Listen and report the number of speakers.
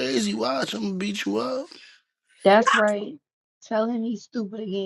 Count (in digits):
2